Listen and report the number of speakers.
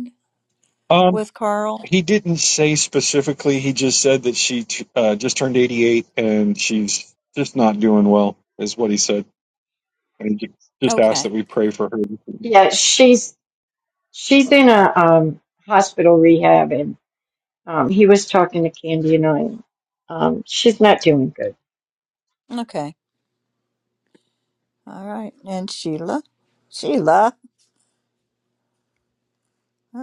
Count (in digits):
3